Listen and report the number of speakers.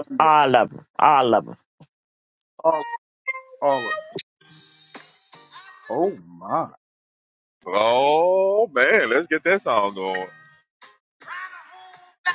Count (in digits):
3